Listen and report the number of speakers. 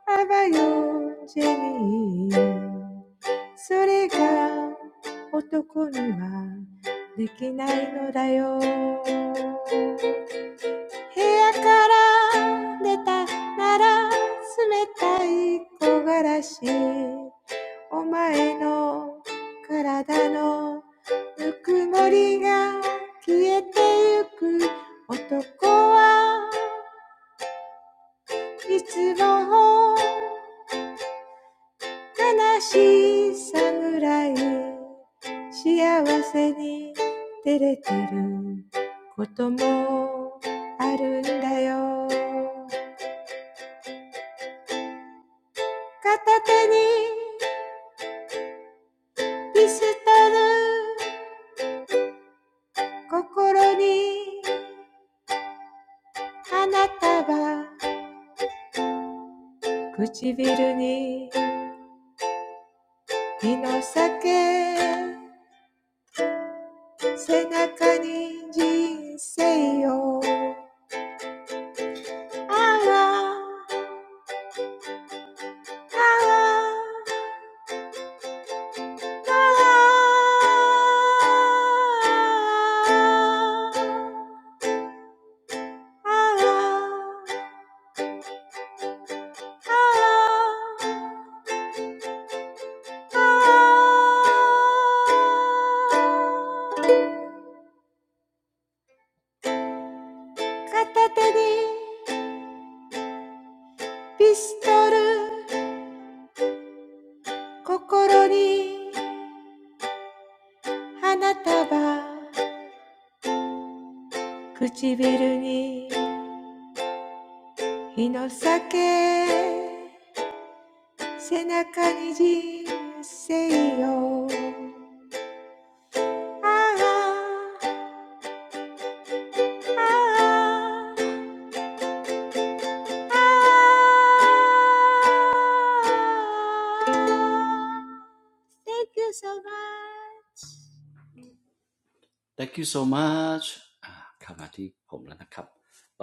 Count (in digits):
2